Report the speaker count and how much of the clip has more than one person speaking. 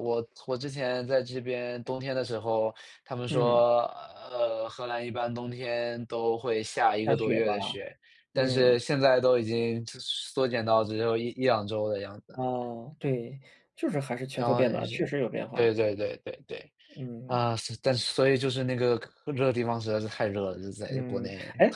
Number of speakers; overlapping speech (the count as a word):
two, about 13%